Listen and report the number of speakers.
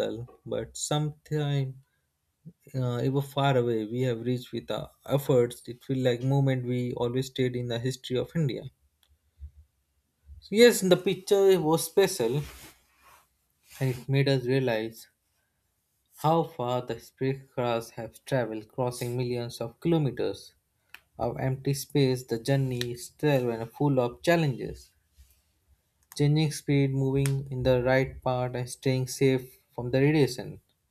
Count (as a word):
one